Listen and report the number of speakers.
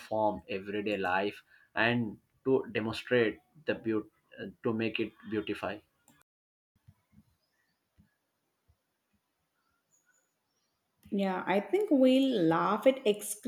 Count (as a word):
two